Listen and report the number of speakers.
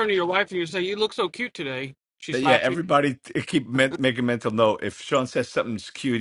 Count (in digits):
2